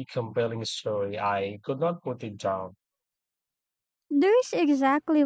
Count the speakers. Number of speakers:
2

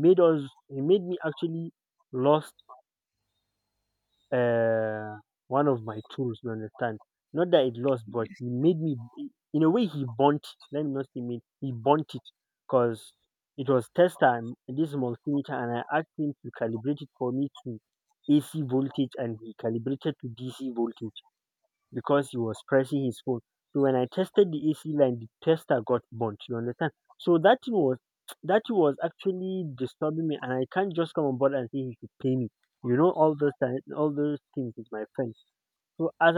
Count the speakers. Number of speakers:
1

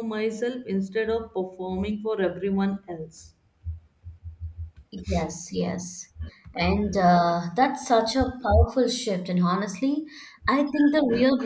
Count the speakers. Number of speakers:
2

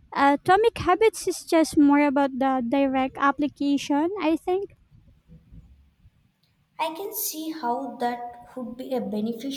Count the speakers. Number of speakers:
2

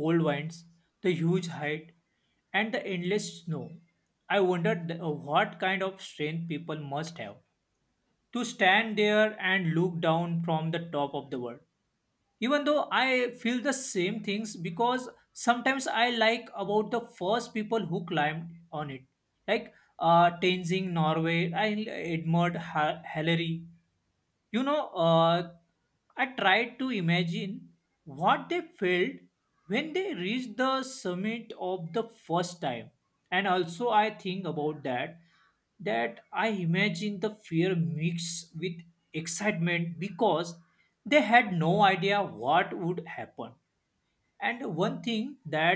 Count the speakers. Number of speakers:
1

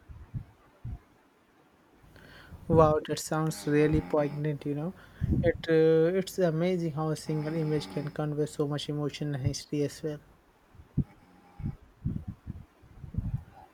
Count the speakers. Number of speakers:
1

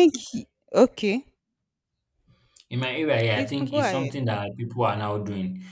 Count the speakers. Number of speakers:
2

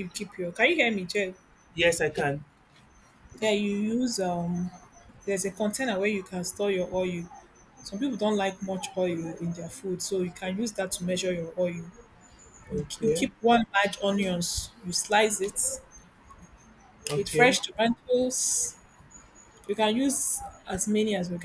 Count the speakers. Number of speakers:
2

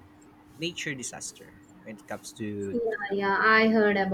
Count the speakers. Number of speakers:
2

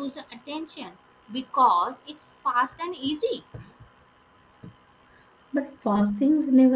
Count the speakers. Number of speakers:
2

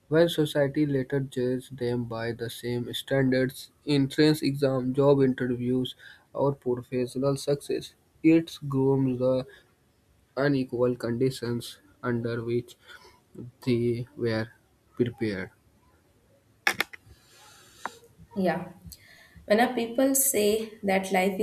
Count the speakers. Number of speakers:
2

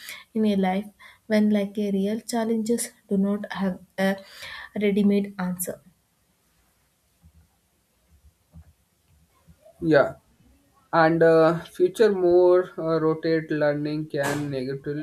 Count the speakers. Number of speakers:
2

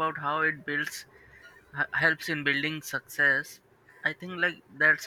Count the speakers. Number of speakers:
1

